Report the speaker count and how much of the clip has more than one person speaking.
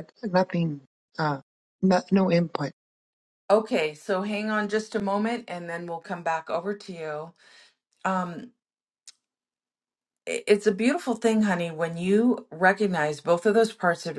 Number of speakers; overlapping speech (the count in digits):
2, no overlap